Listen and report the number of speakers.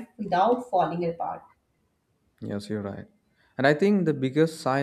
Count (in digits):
2